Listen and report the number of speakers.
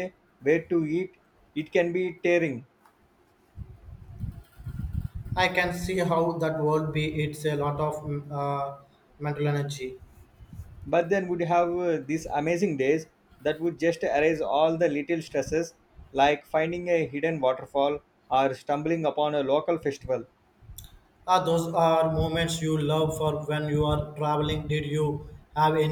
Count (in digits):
2